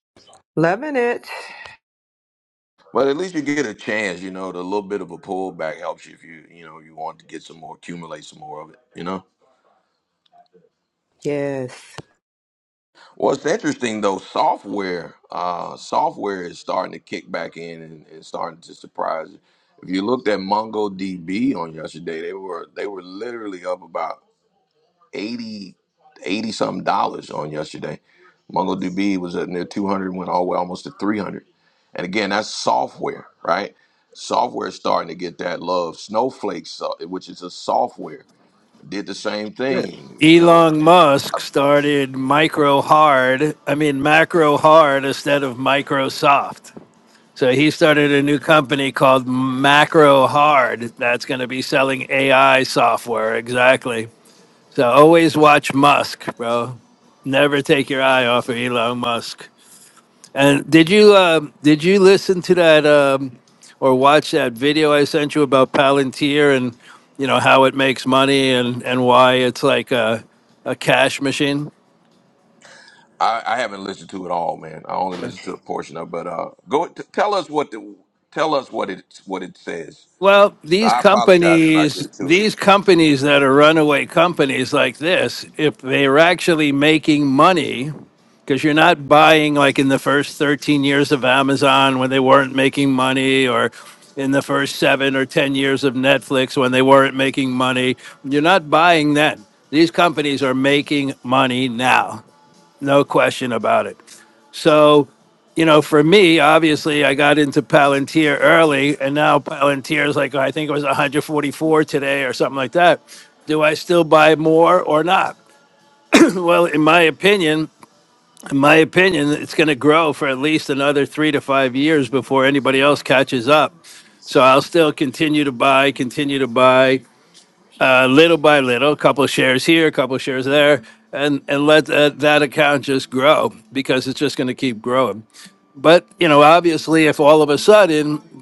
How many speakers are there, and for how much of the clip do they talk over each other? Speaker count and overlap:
three, about 1%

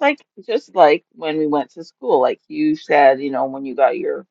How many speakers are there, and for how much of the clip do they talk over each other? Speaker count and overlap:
one, no overlap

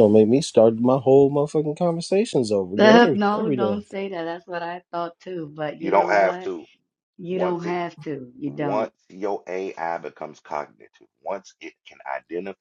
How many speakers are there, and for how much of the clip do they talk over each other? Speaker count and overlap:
three, about 20%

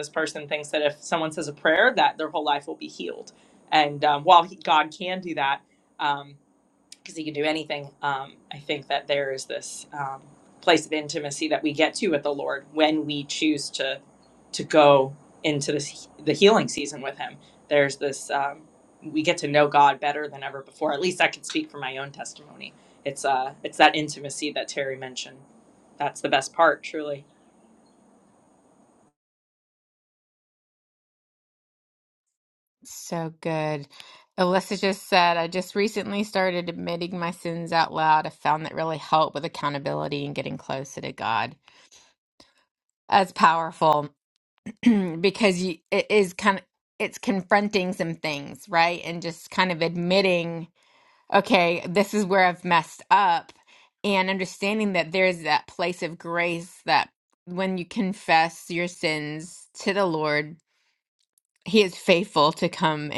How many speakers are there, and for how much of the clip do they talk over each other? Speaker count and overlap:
two, no overlap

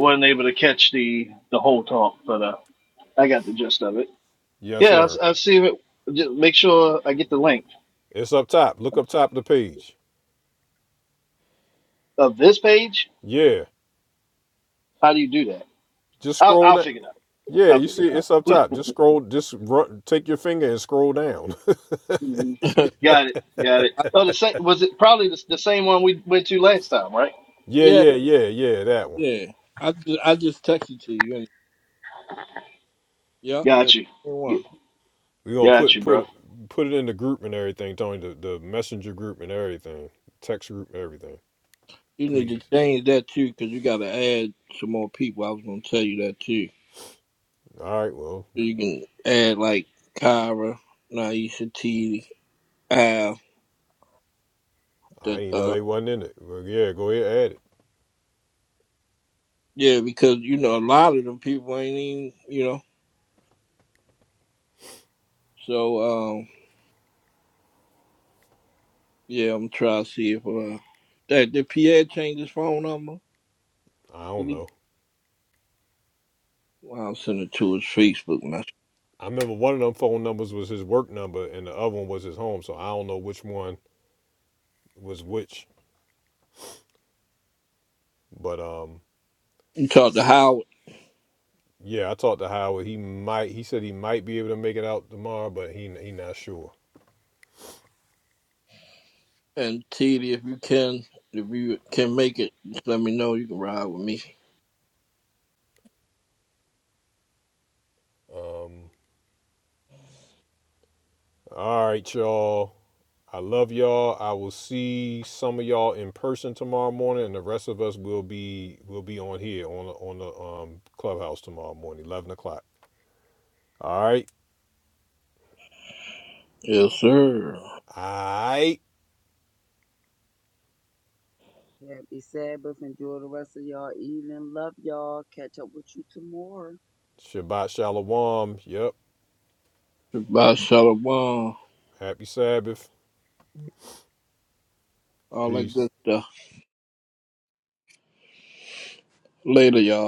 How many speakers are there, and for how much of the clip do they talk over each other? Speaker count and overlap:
four, about 3%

